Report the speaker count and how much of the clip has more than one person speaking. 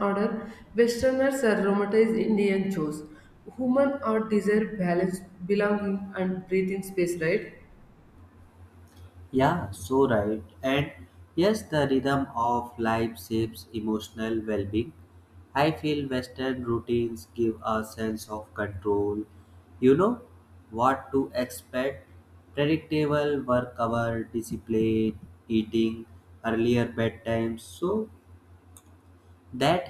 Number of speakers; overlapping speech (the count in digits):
2, no overlap